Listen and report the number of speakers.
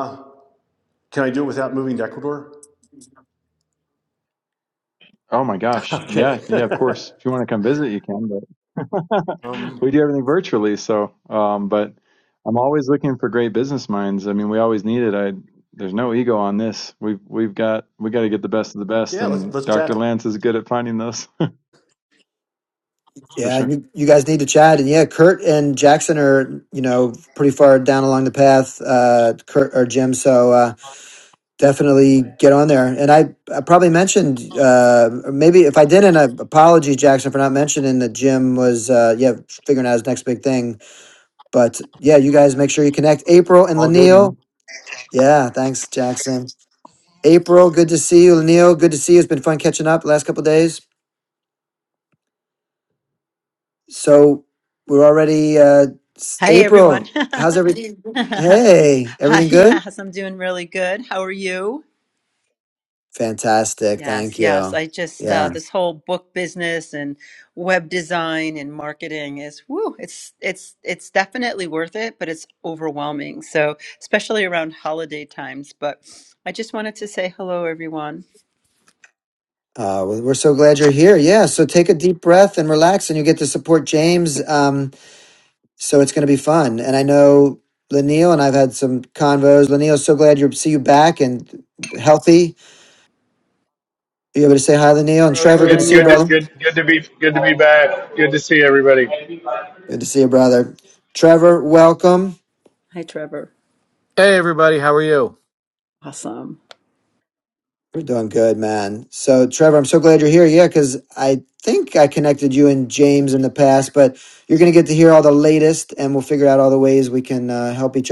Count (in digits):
6